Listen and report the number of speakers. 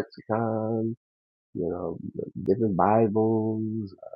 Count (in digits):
1